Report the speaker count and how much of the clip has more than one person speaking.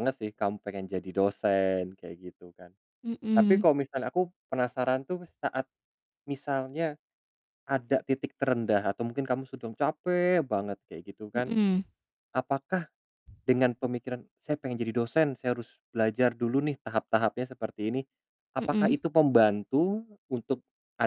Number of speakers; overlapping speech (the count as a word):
two, about 4%